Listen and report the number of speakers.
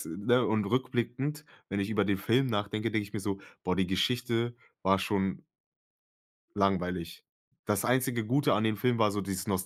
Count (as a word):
one